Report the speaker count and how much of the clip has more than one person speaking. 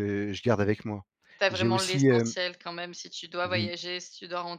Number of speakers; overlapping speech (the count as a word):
two, about 24%